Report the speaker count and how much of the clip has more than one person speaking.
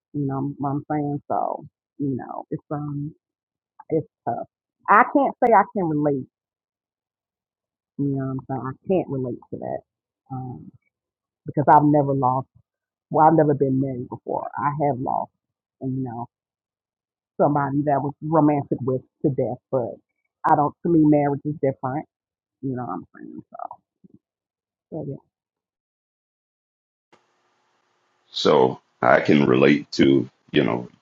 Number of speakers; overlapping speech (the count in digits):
2, no overlap